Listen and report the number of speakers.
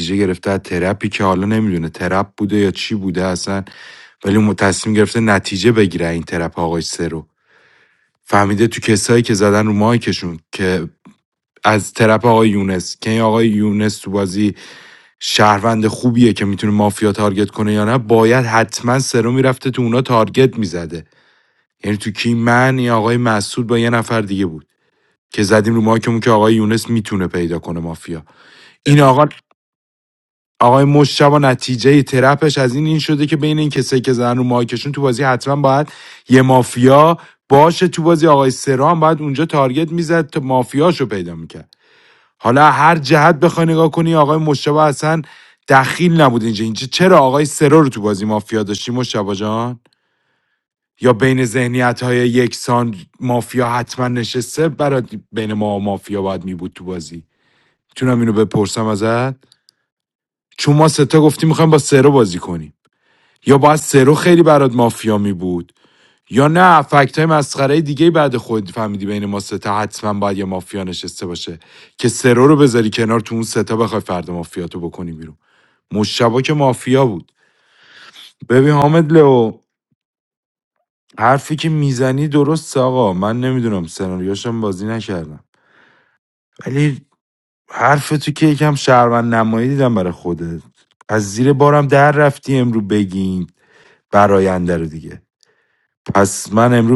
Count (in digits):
1